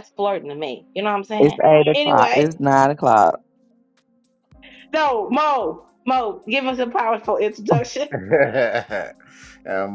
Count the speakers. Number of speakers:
three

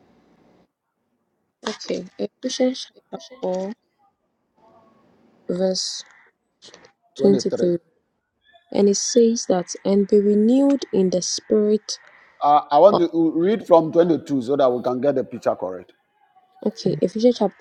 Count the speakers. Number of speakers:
two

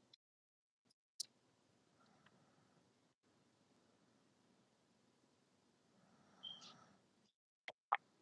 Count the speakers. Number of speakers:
zero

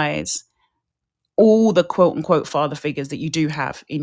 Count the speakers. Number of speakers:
one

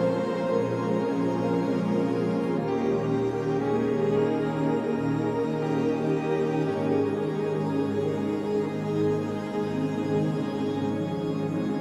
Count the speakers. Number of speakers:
zero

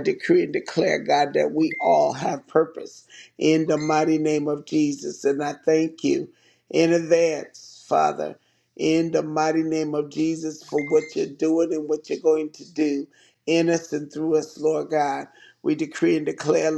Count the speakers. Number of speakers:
one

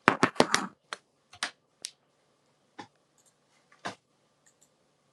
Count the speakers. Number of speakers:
zero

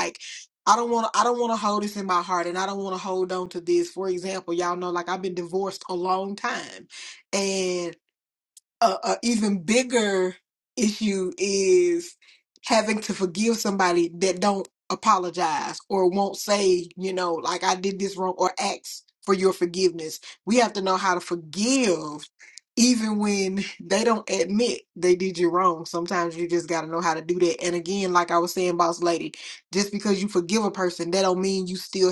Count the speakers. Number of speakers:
one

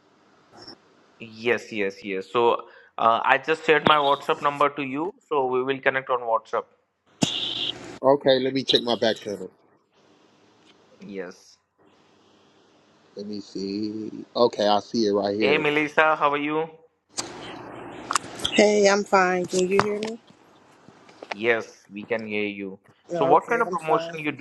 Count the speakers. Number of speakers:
three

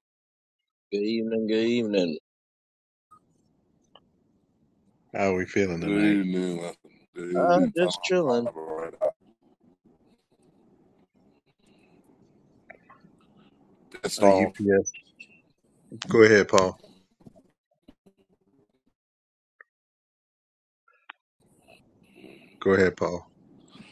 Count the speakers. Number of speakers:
three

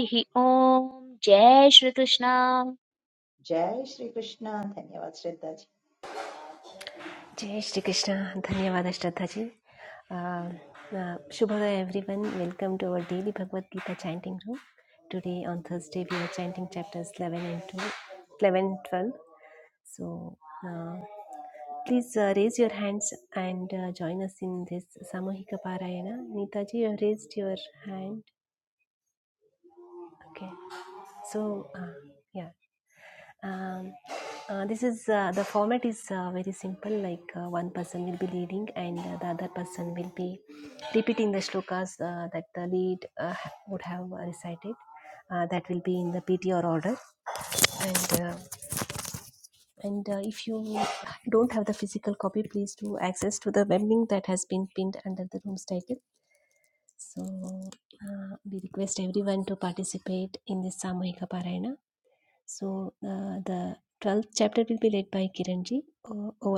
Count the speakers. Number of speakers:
three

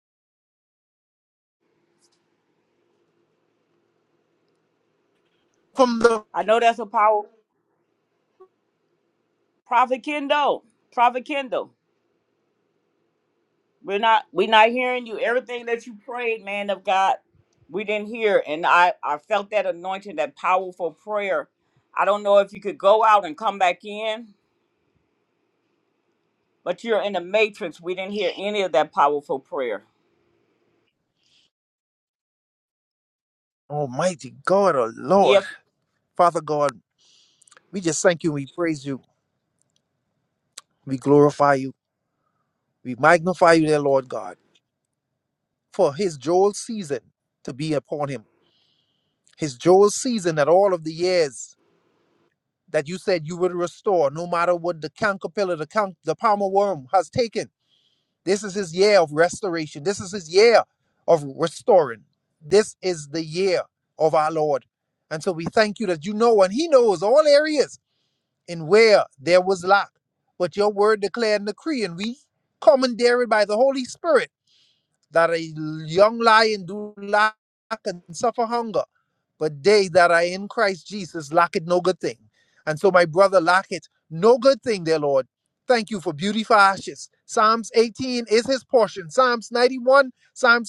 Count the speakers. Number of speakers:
two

